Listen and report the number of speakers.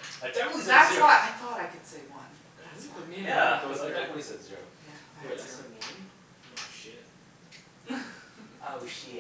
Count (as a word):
three